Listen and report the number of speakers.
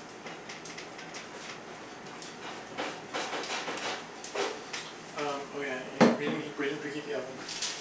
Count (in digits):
1